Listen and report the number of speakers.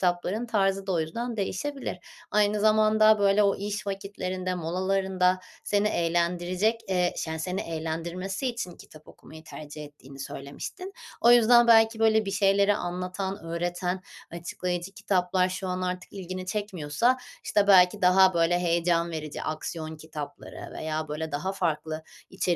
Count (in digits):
1